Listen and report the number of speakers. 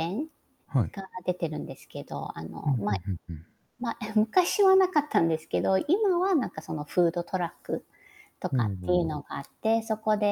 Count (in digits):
2